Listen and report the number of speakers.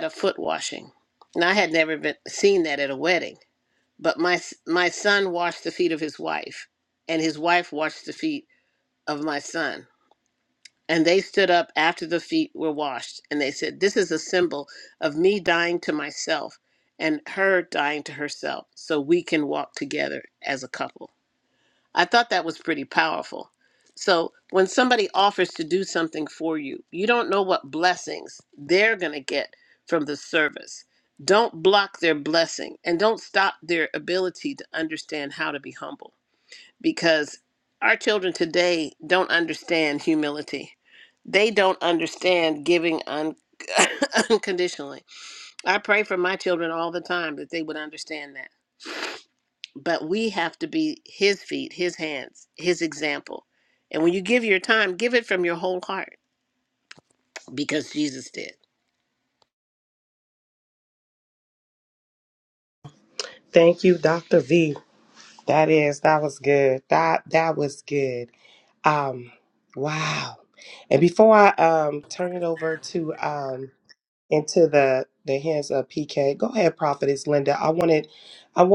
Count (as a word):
two